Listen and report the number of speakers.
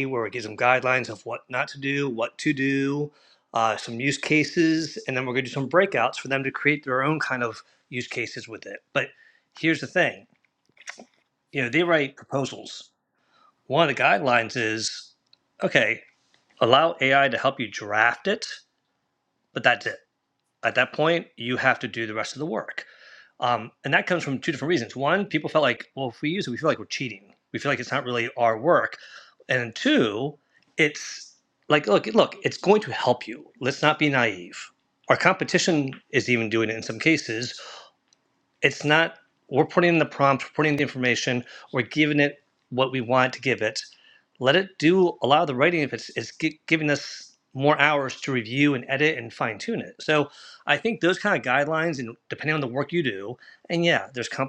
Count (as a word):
one